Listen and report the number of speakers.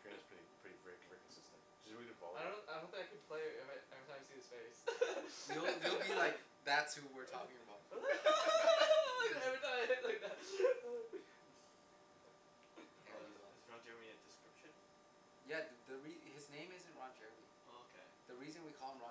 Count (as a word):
four